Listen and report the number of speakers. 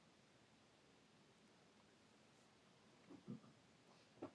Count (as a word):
zero